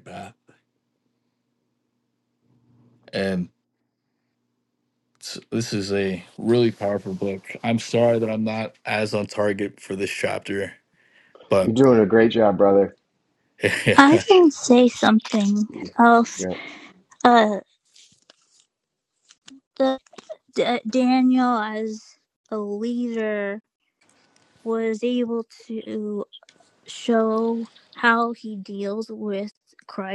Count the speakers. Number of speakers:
3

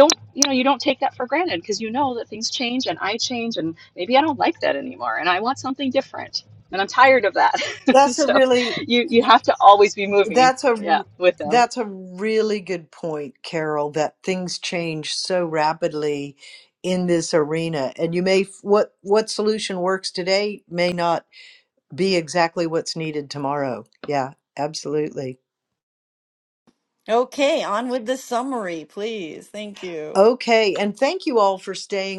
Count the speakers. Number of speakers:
3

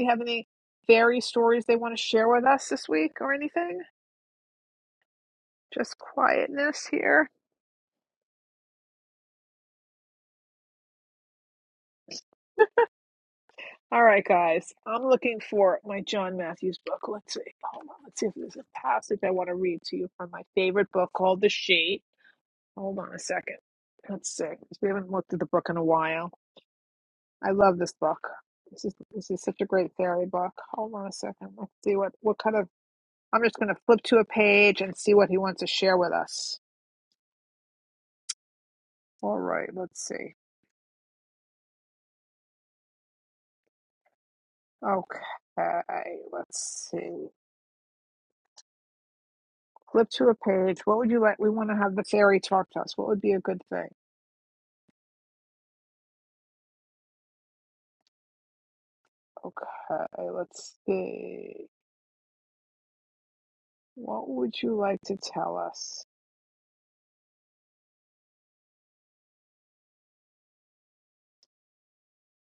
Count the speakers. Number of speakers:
1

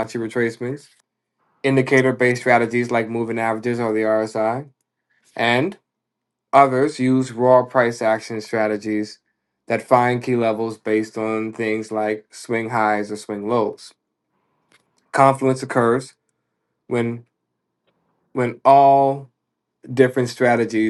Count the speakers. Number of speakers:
1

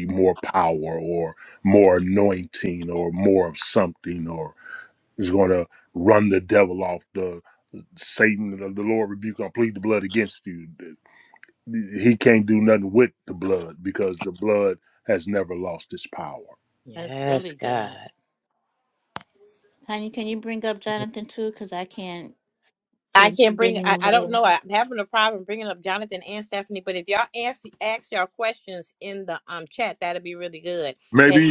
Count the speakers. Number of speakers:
3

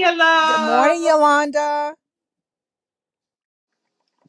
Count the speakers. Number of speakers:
2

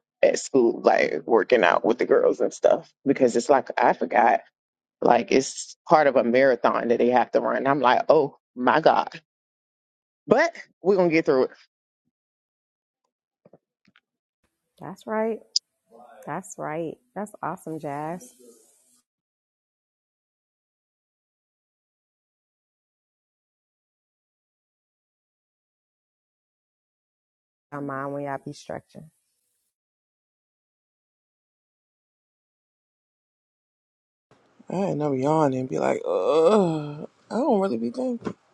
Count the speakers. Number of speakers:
3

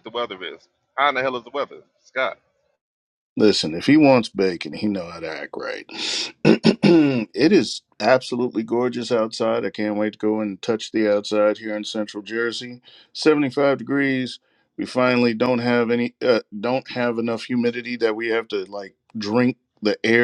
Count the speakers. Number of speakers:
2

